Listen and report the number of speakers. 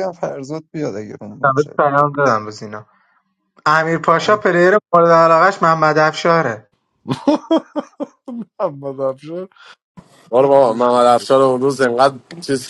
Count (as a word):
four